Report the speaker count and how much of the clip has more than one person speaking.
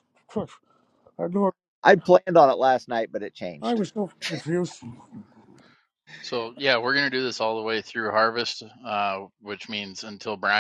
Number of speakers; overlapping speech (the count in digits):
3, about 1%